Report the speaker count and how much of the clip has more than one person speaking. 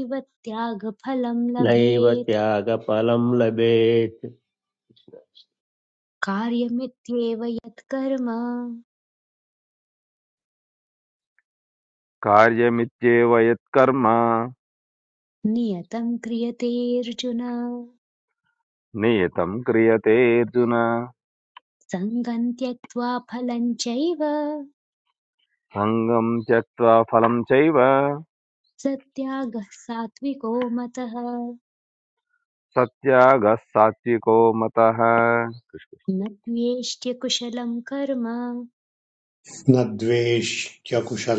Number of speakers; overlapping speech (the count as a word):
four, about 2%